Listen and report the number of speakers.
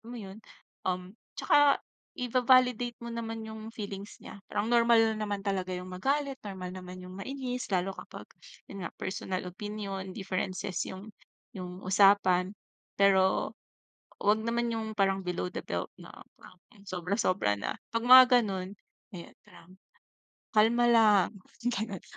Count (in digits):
1